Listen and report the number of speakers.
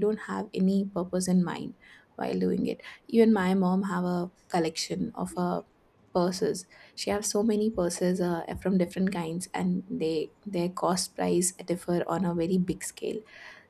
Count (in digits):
1